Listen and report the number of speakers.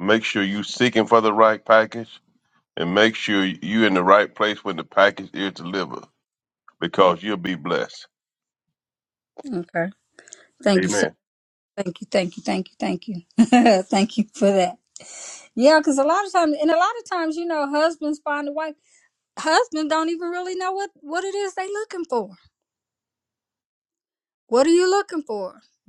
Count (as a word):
two